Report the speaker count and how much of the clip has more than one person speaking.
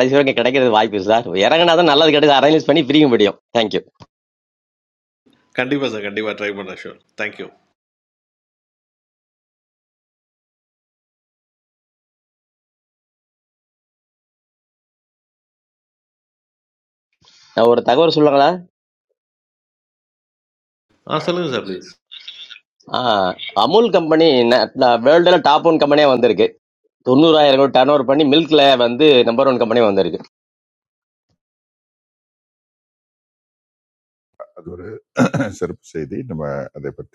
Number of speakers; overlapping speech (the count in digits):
3, no overlap